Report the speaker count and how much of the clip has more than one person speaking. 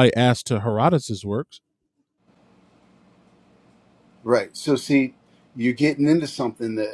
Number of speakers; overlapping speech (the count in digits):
2, no overlap